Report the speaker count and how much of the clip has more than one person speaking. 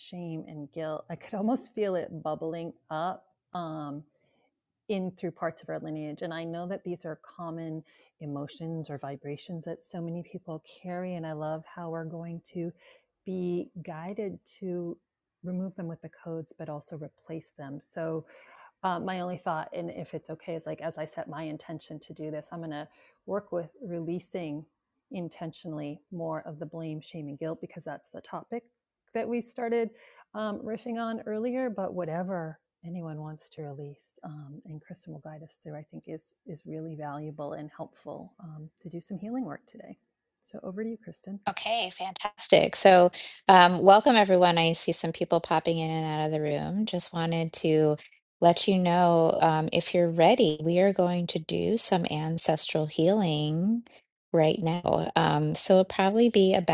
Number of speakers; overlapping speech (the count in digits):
2, no overlap